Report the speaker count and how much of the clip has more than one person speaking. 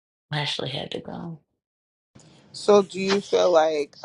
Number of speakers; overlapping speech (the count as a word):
two, no overlap